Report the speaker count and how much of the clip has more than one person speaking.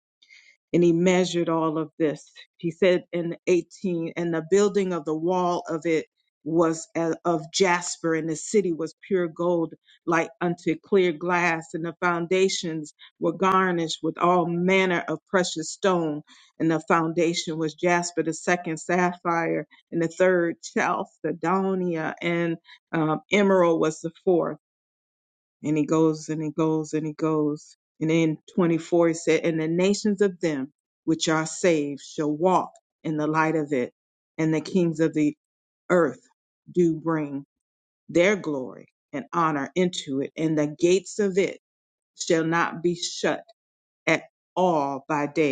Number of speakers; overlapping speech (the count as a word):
one, no overlap